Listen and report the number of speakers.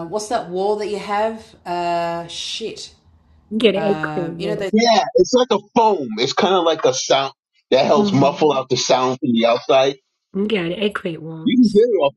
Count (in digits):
3